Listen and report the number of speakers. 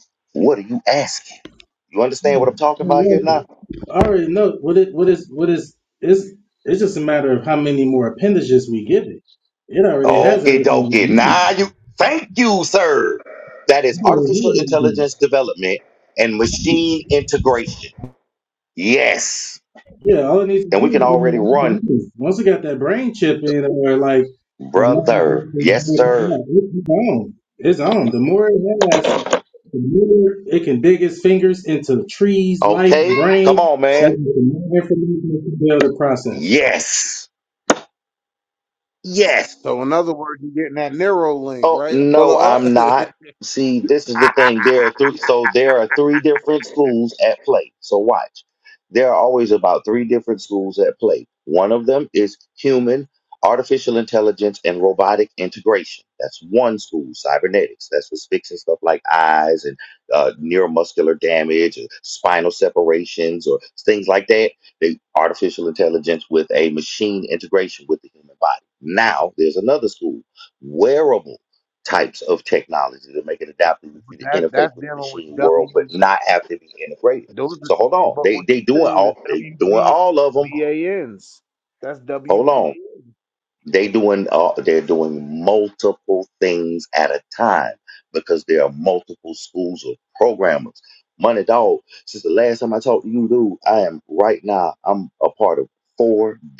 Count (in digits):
3